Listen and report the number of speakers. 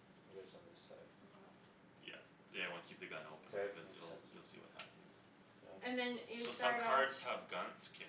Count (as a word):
three